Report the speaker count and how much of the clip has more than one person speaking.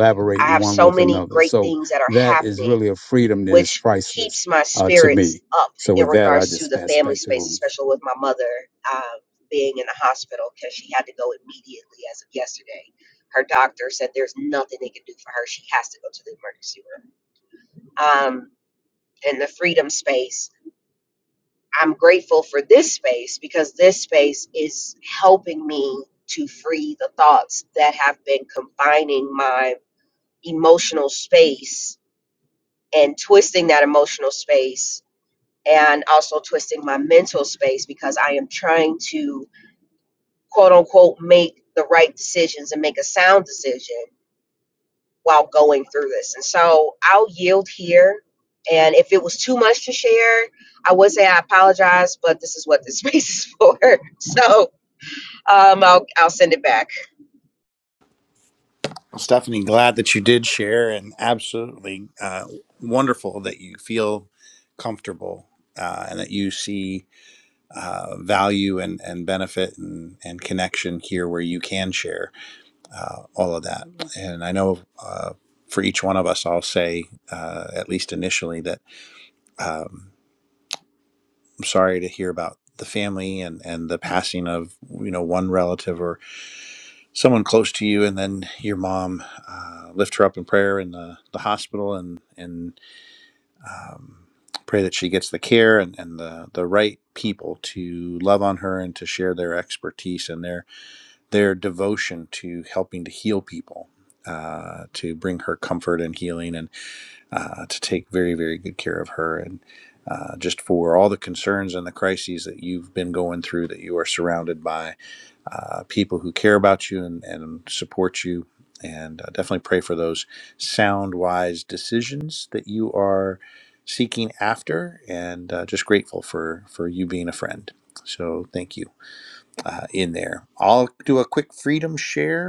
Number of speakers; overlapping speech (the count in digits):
3, about 4%